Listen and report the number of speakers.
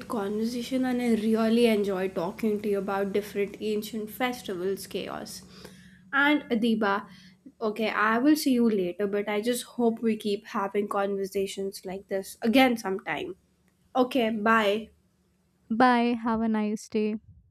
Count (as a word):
two